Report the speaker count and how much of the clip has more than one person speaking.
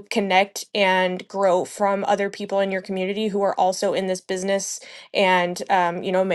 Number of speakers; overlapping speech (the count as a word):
one, no overlap